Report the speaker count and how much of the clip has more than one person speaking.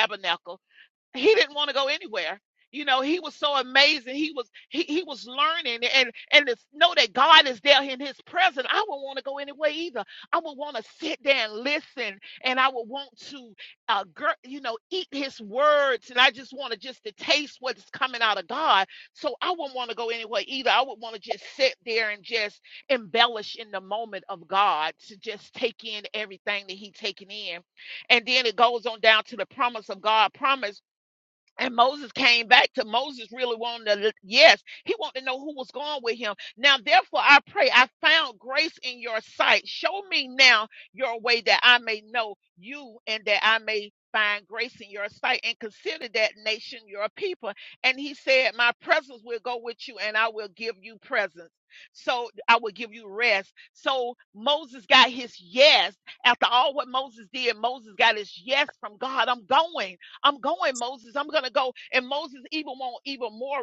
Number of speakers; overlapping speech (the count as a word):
one, no overlap